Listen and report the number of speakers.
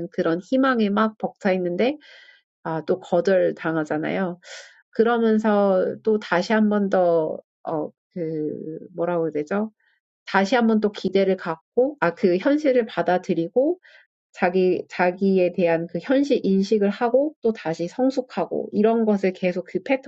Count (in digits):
1